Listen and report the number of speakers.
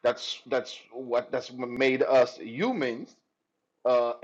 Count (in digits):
1